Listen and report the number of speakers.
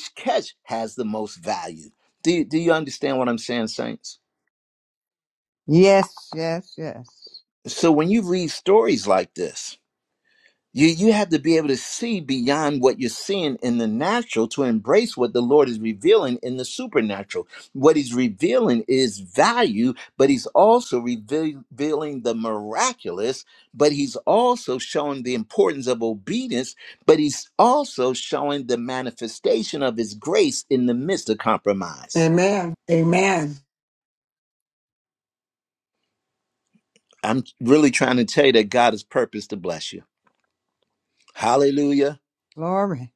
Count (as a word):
three